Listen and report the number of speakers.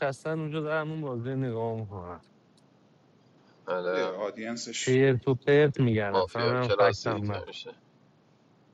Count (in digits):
3